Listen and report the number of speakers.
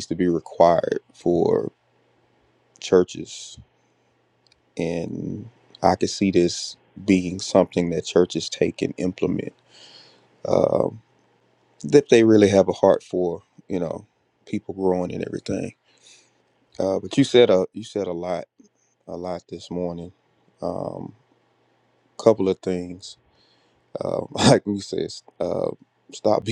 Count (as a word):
one